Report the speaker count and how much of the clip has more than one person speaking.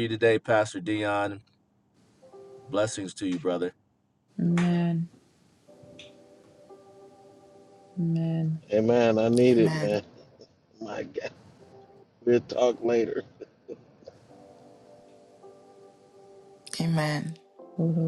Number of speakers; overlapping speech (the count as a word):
four, about 2%